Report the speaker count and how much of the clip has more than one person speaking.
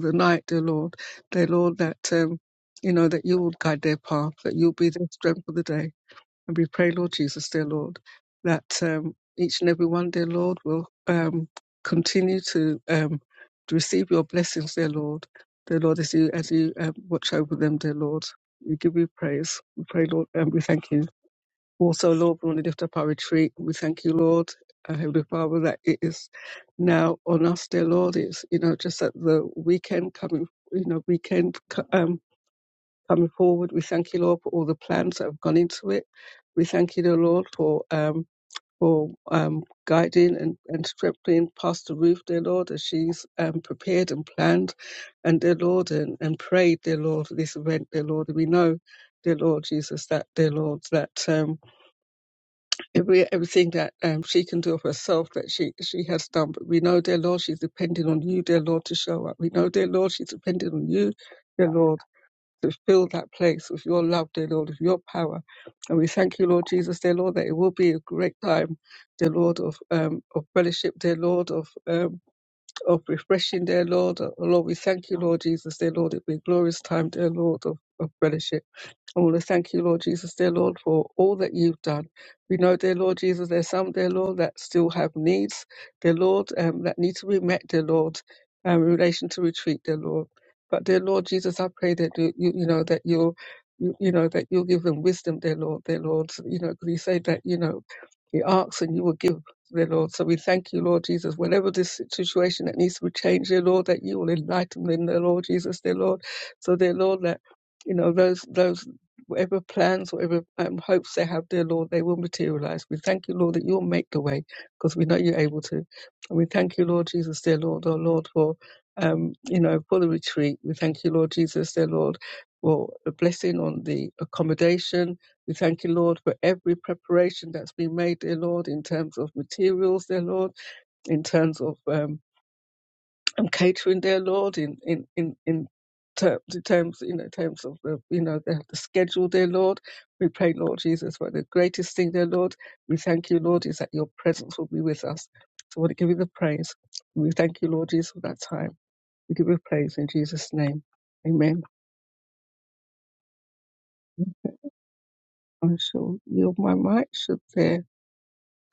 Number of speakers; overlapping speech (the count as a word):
one, no overlap